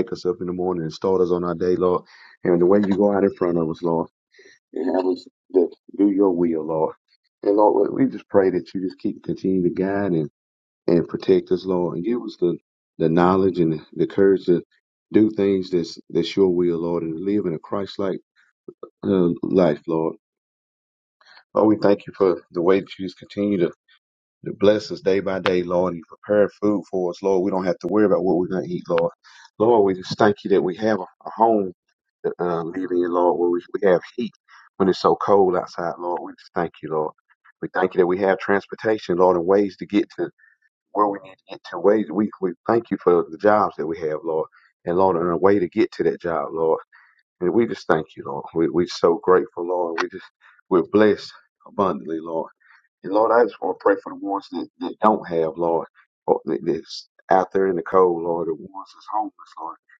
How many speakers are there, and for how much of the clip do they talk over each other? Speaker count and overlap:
1, no overlap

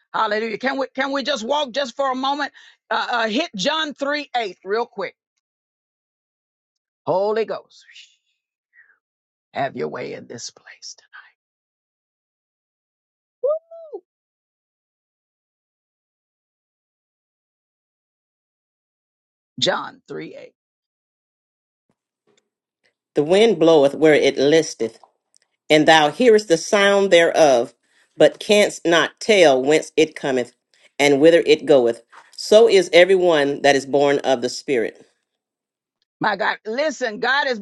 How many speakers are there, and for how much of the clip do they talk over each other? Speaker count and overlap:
2, no overlap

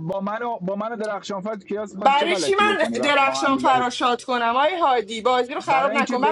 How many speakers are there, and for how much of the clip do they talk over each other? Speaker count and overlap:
2, about 39%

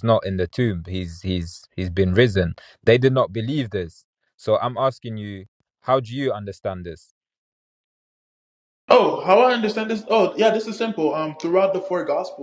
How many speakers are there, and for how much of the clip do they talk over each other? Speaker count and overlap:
2, no overlap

